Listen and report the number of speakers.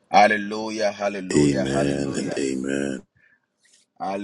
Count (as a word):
two